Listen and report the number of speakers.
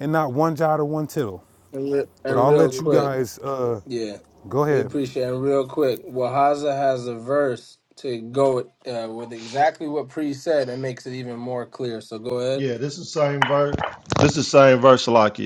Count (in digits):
3